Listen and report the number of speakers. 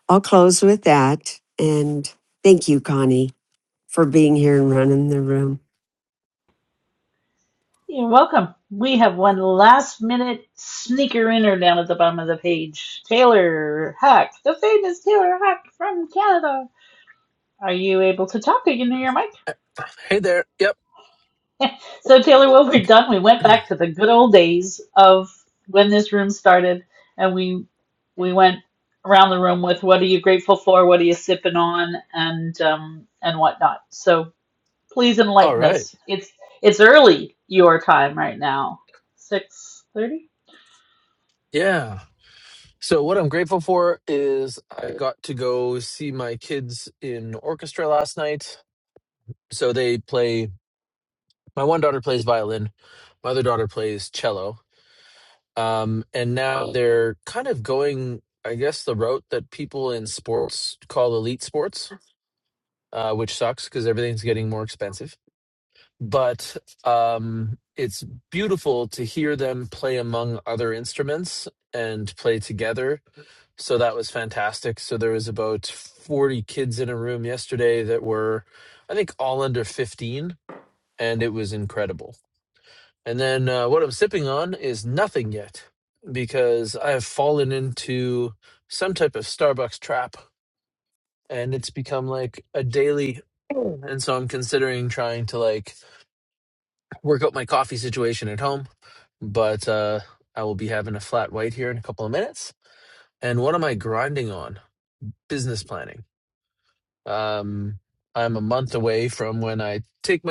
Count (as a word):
three